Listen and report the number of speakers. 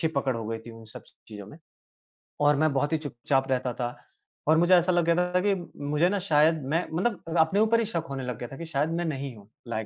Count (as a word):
one